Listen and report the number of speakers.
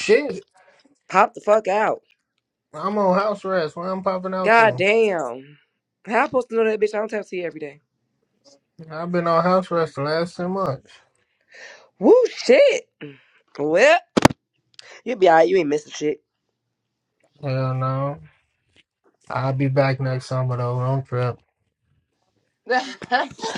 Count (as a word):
two